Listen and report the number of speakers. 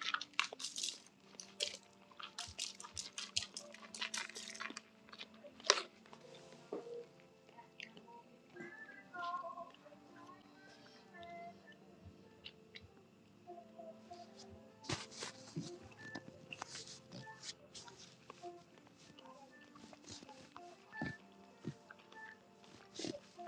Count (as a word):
zero